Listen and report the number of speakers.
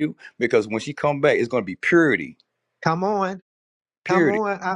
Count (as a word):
two